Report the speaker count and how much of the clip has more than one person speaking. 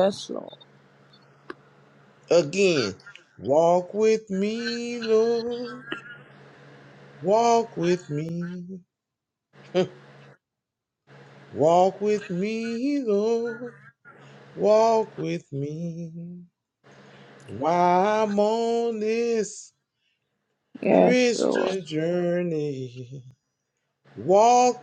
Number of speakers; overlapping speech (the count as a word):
two, about 3%